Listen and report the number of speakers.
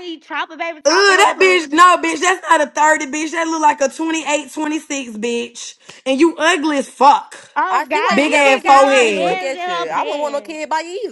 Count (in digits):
3